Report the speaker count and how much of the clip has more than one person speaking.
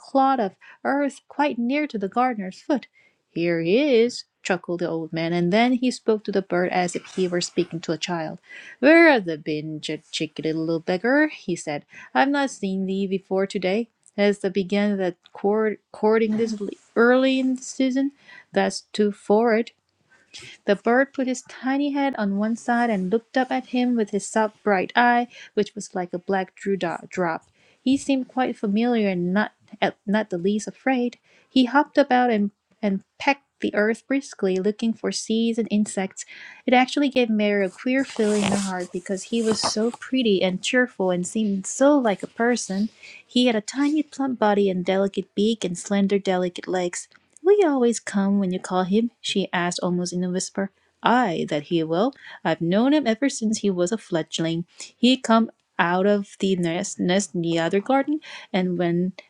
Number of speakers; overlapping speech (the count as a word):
one, no overlap